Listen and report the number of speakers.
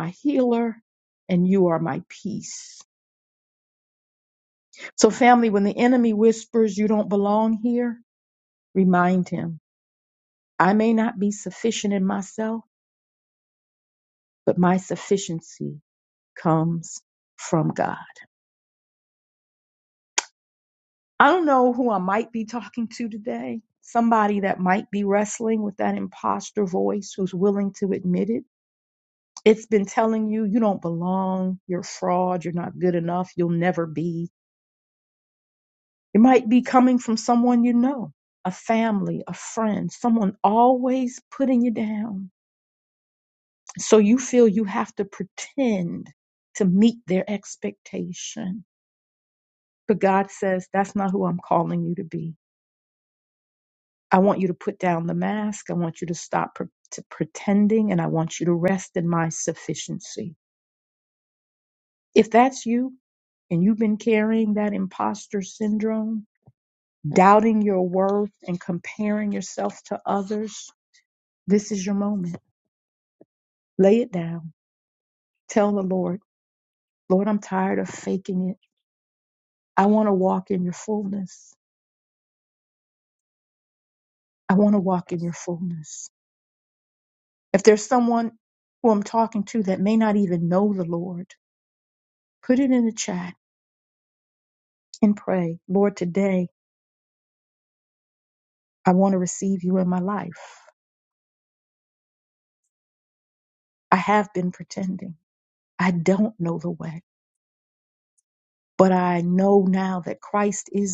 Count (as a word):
one